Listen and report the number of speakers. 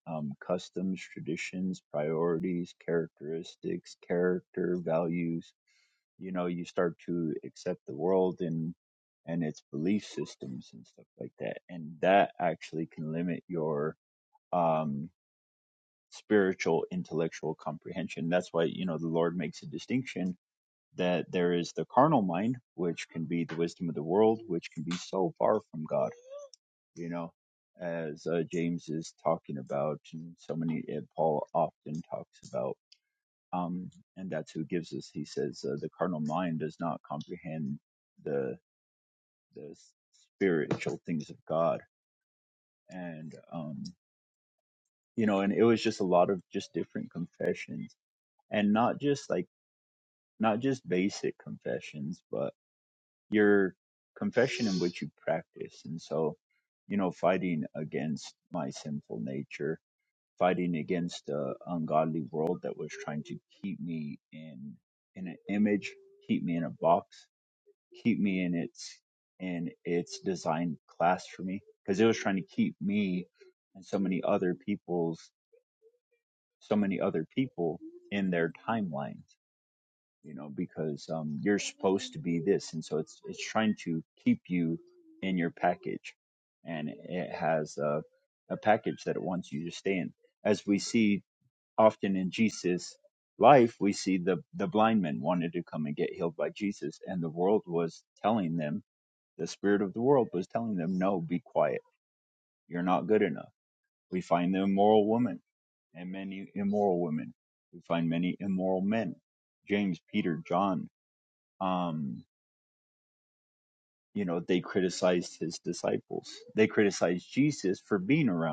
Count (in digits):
1